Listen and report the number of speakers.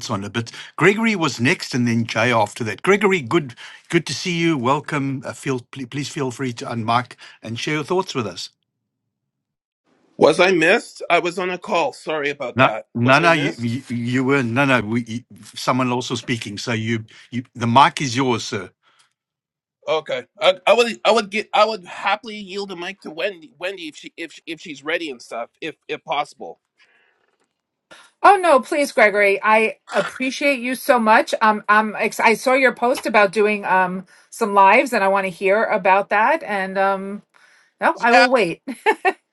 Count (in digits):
3